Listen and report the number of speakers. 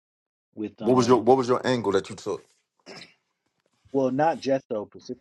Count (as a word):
two